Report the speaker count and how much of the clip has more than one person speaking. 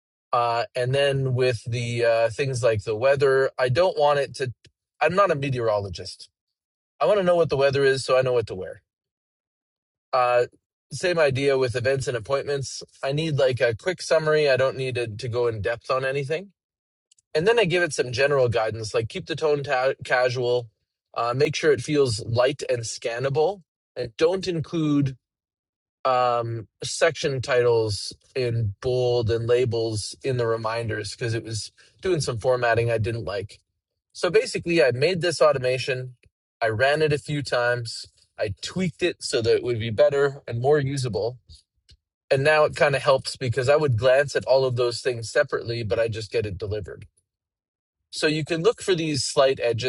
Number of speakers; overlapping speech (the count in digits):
1, no overlap